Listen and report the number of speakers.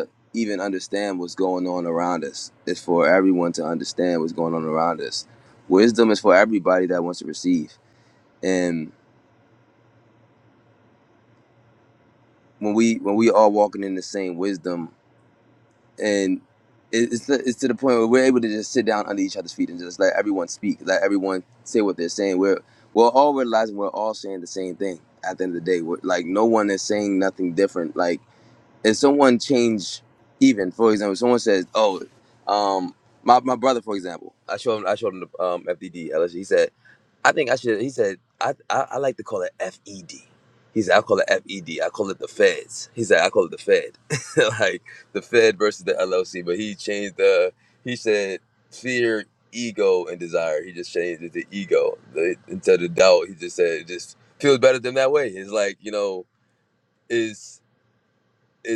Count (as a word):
one